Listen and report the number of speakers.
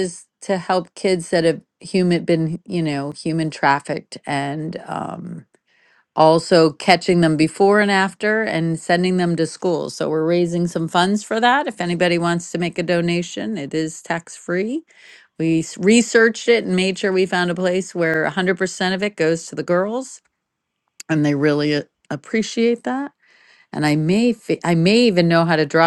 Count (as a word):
one